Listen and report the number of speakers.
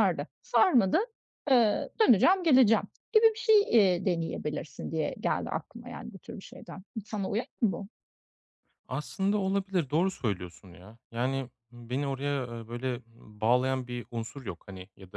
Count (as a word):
two